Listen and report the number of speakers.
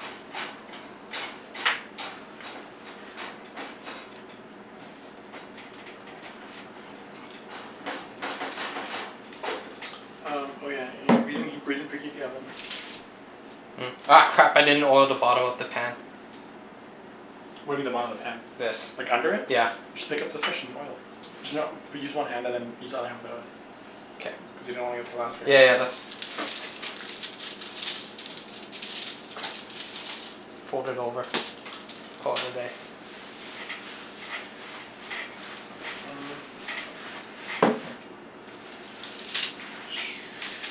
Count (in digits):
2